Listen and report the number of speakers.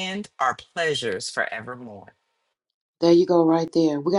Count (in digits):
2